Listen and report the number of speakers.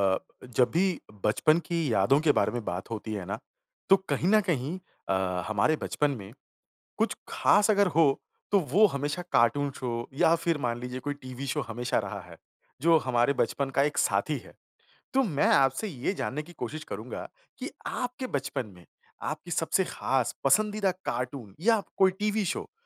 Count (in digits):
1